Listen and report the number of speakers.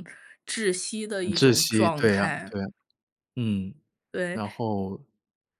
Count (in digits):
2